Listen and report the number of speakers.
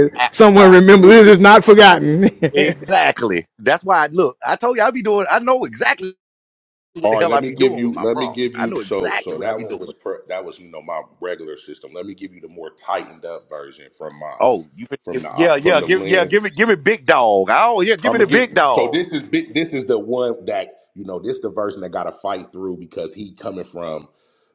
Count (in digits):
3